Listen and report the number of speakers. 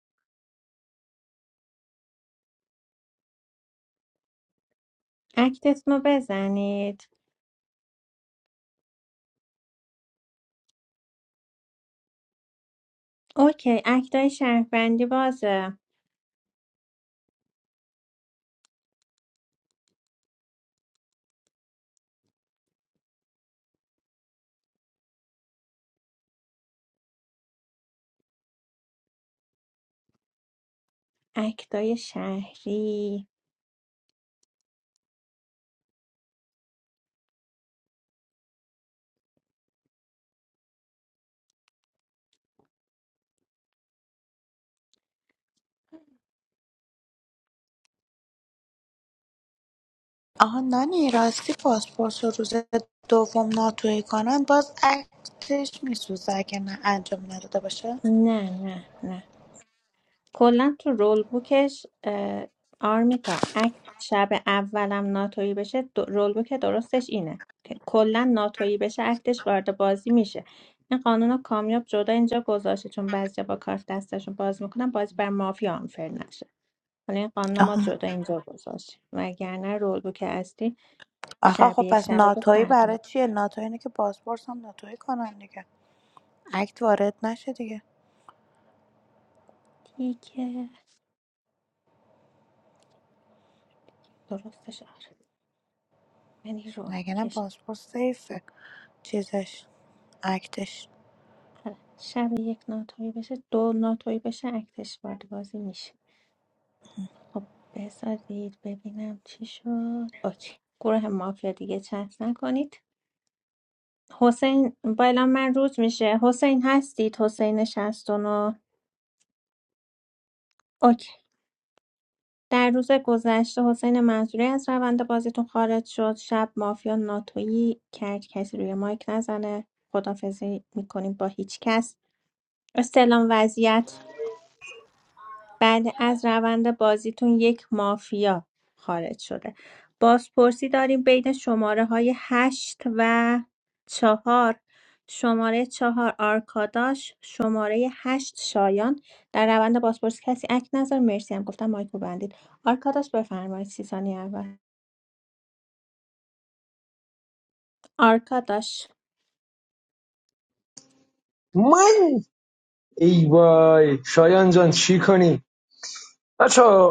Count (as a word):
three